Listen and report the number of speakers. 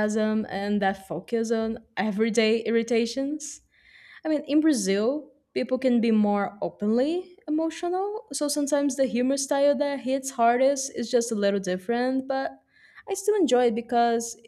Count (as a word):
one